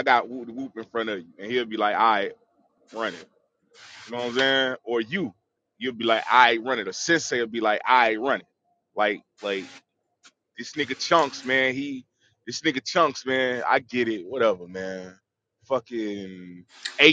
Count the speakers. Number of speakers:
one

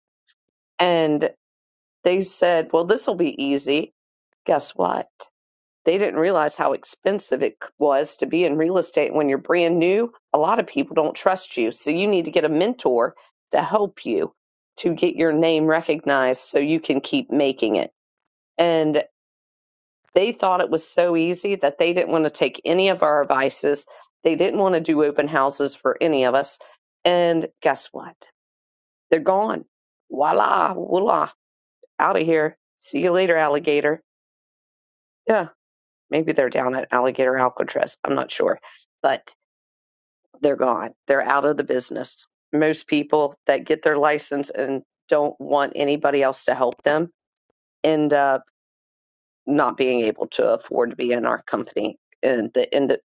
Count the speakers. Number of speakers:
one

